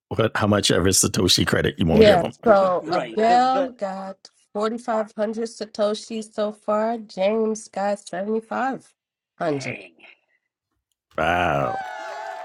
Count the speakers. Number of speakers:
3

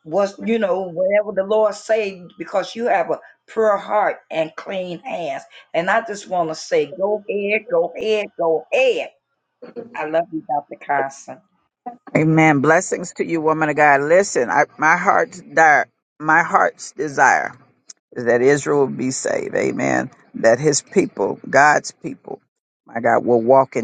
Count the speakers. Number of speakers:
2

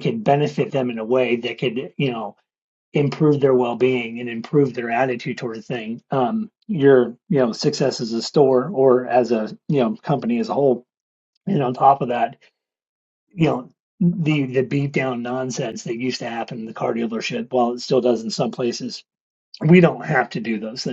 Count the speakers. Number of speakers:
1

